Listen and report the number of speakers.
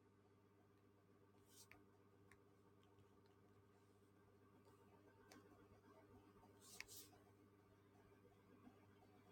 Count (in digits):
0